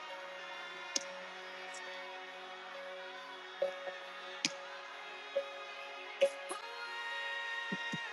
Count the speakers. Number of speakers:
0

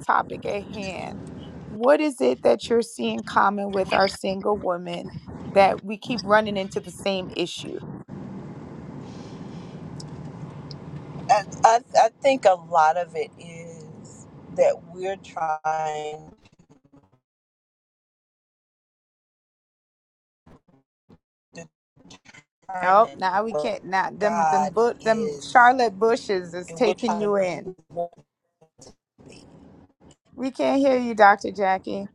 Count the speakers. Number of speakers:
2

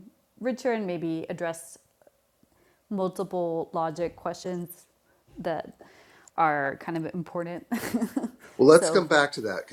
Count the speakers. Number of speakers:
2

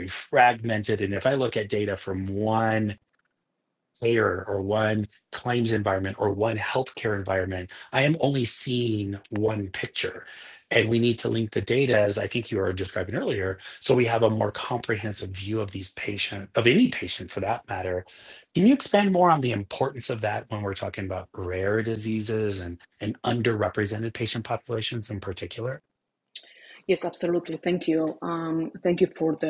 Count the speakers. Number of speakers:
2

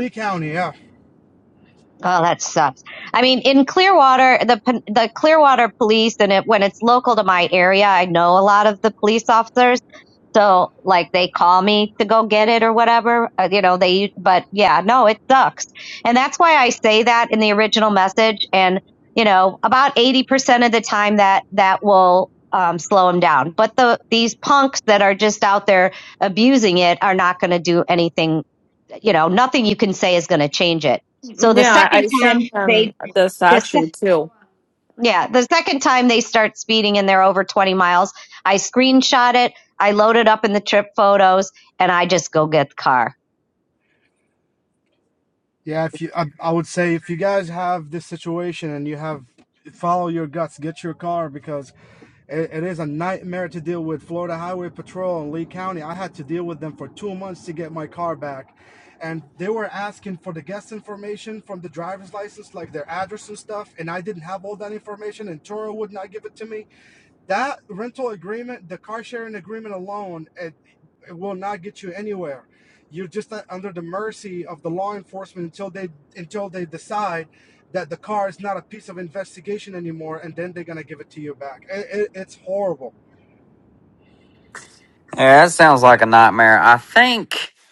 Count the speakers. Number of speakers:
4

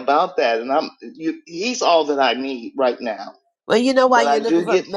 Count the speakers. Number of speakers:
2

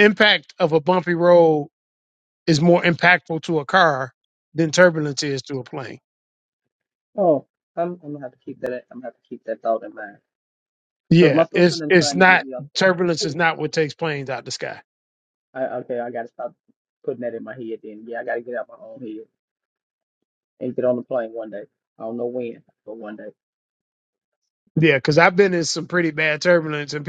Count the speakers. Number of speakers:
2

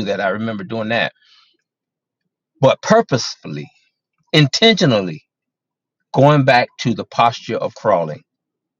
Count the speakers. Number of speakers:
1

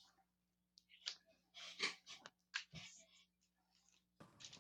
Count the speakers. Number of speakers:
0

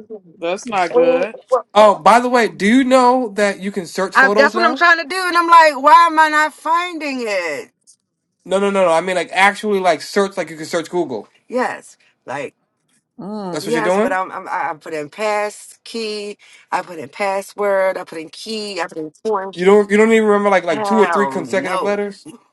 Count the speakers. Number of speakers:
3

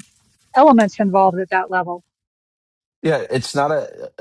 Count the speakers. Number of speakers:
2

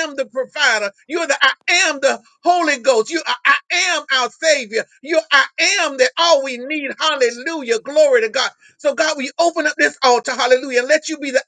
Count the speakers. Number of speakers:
1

